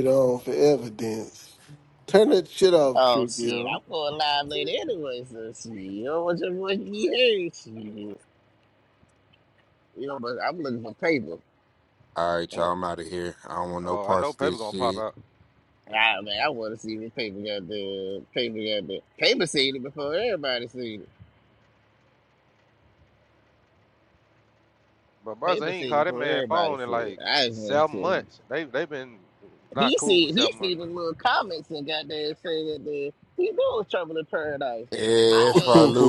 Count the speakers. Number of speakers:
4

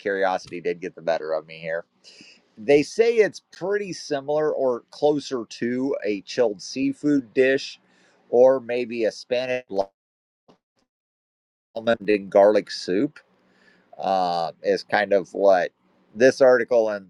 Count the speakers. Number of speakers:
1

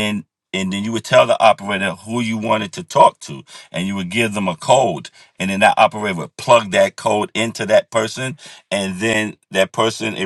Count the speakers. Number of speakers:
1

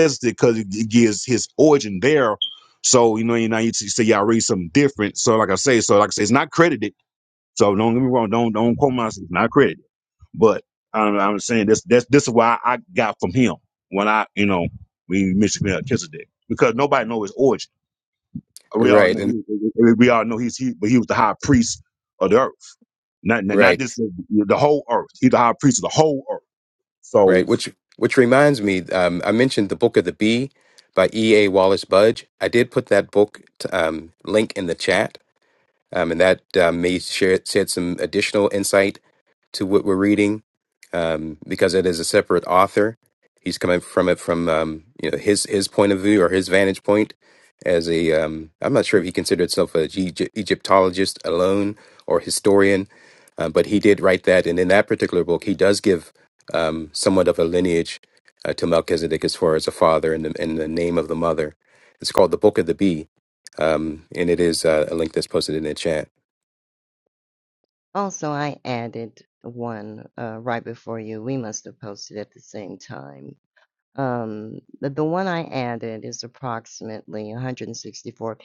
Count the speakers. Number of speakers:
3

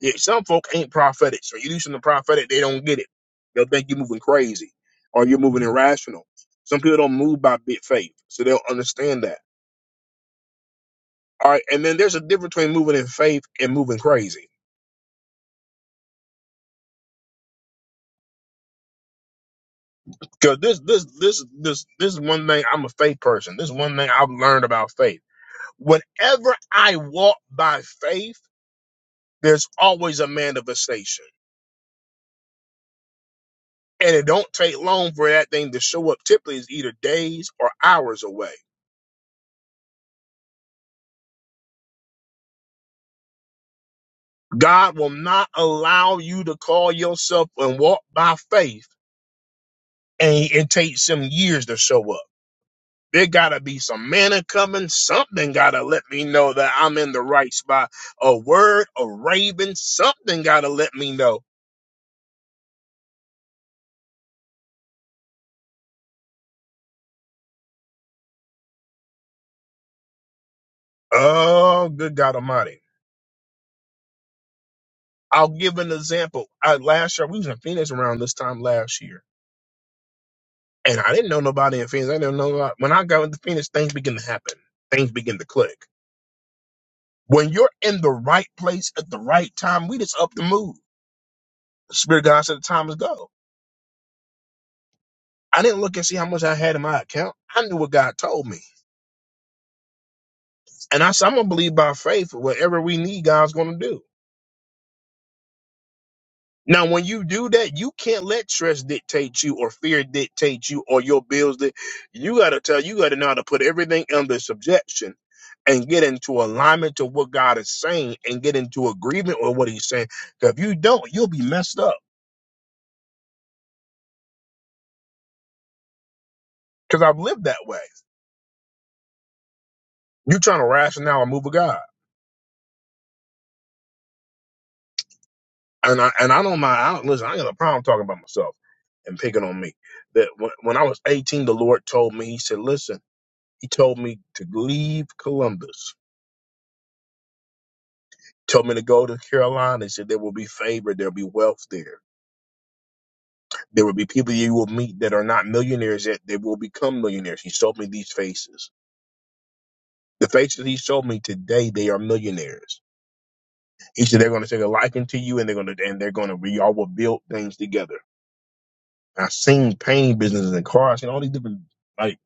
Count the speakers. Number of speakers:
1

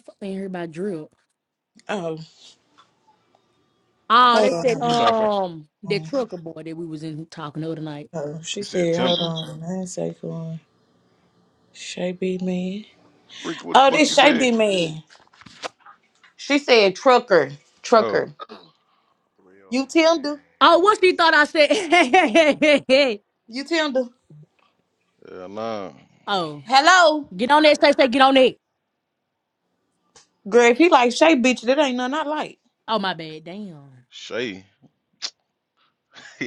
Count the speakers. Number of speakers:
3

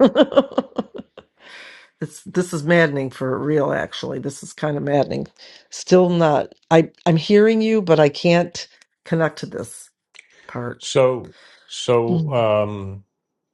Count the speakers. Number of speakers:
2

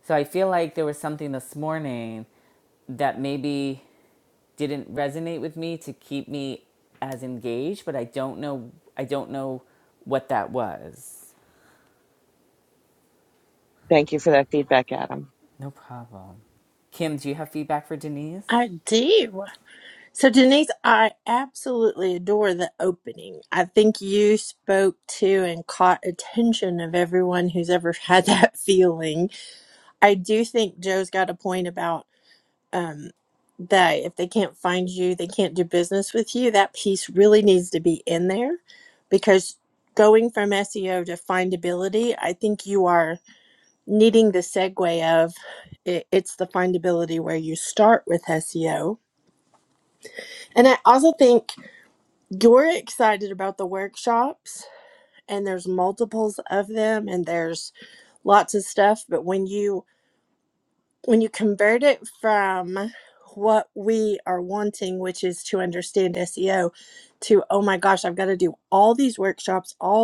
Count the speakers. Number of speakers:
3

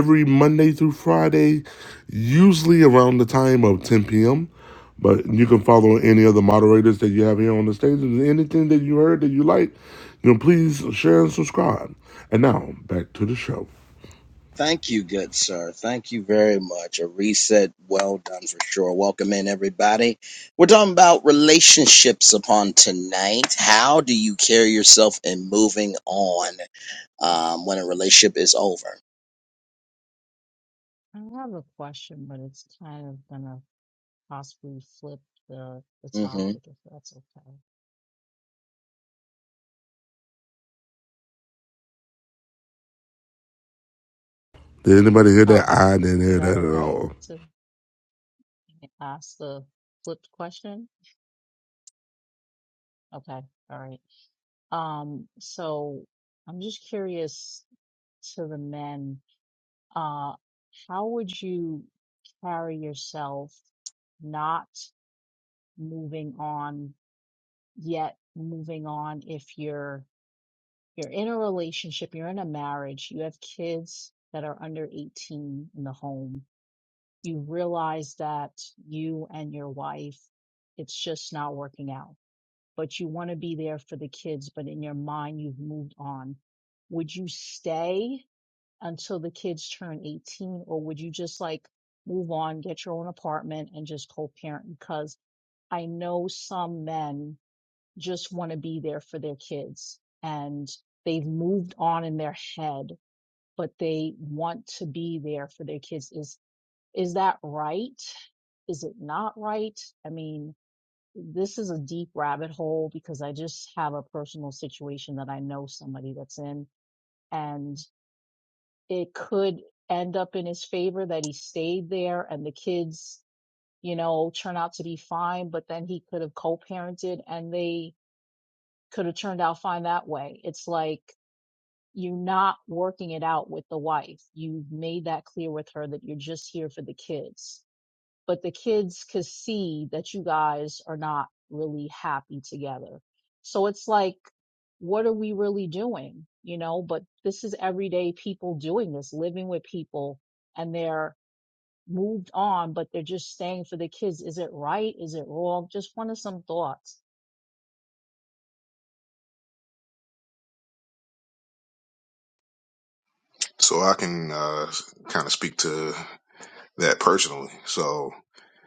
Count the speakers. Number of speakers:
4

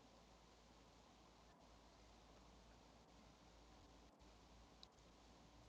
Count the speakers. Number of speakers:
0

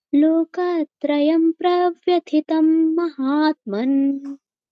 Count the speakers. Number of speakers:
1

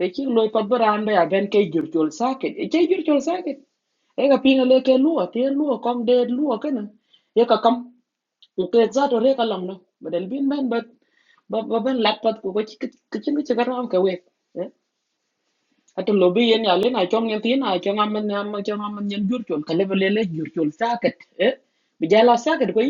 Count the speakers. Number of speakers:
1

